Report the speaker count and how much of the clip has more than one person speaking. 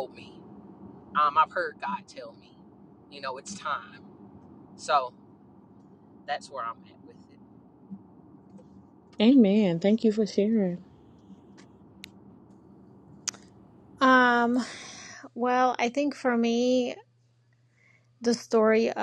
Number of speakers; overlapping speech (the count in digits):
3, no overlap